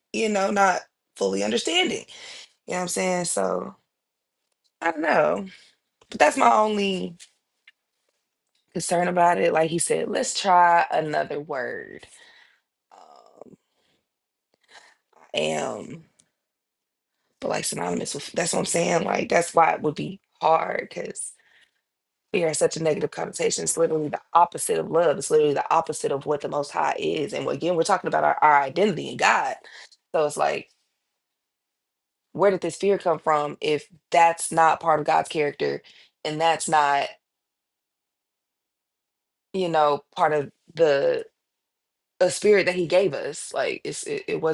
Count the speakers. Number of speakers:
1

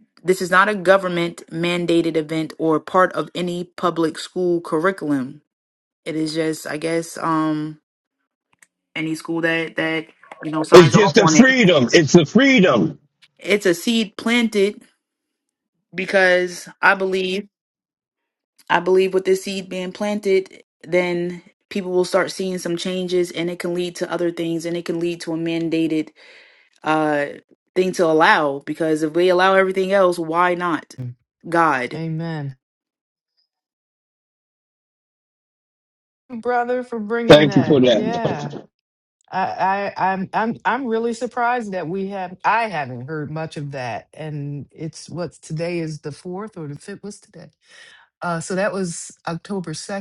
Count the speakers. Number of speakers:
3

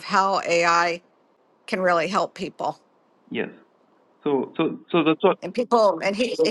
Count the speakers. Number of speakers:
2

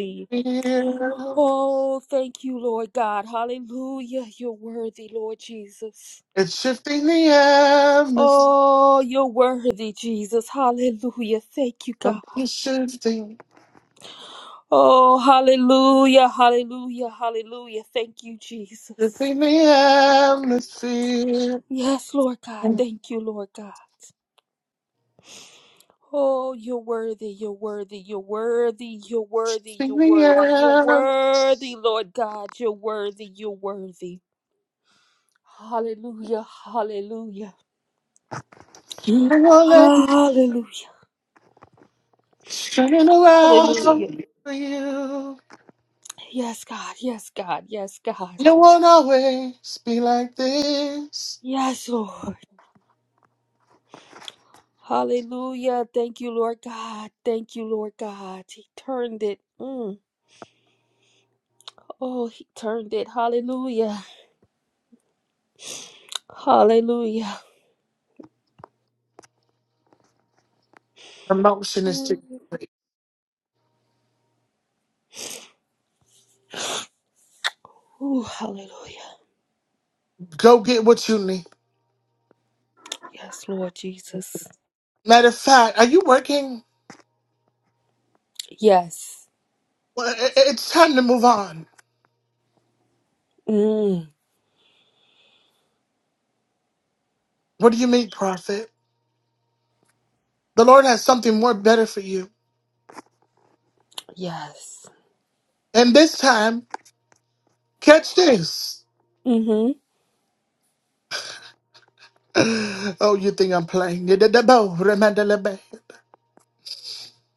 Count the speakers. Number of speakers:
2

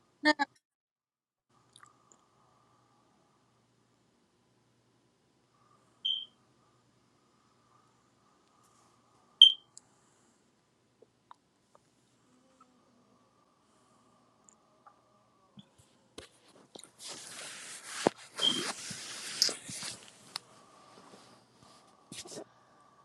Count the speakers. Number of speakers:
0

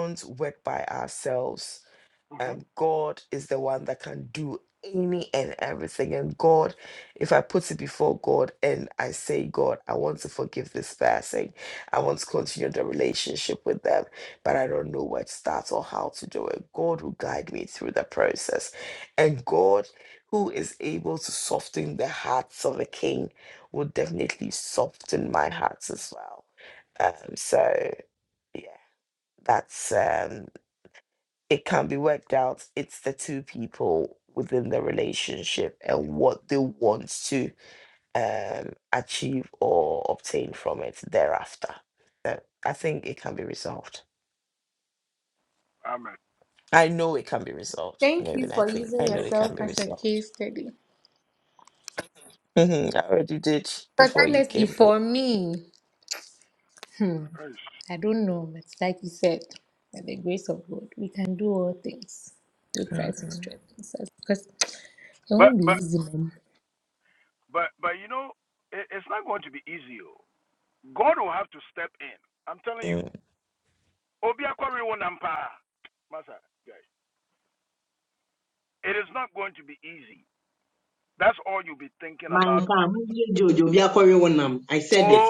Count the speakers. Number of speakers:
4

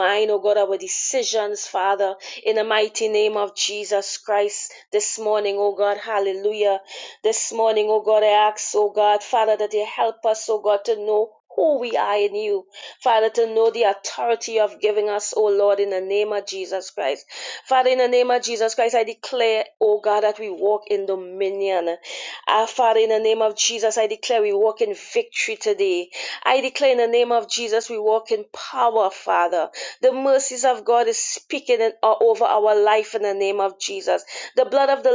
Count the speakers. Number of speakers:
1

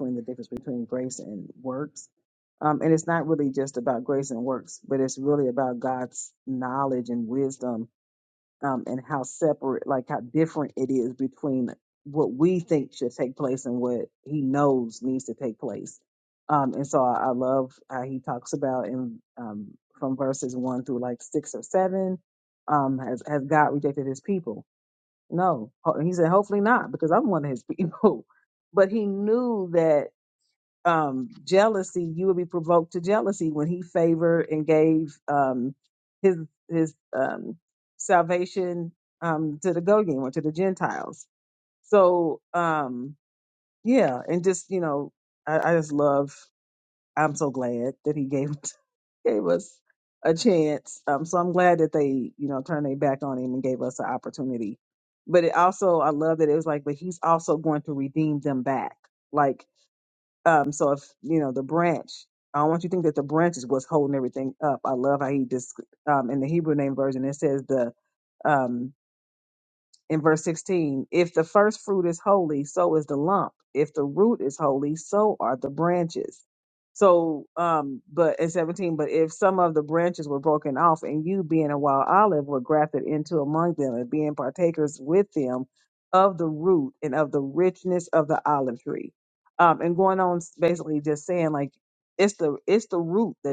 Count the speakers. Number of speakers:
1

